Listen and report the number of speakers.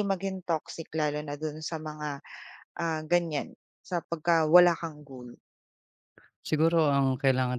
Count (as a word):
two